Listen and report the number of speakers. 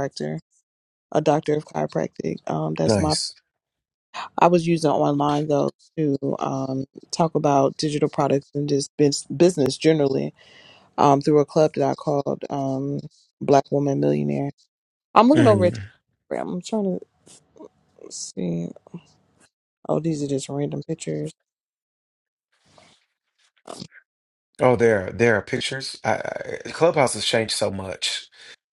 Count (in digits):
2